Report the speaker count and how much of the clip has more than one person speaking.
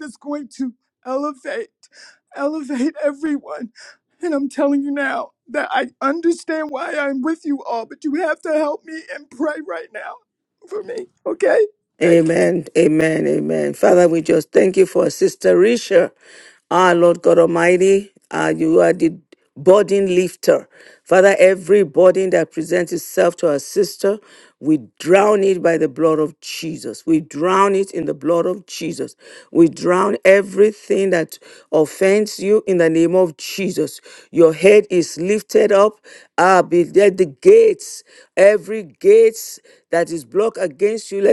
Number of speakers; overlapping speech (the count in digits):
2, about 1%